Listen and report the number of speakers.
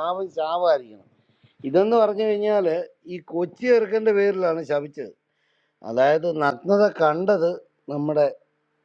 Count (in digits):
1